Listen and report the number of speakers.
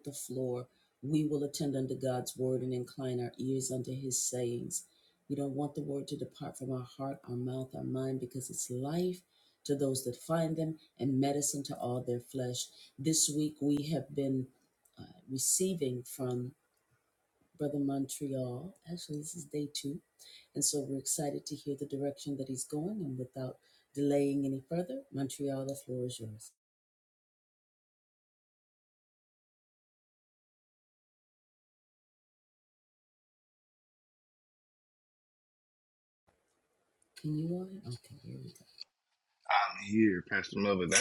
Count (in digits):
2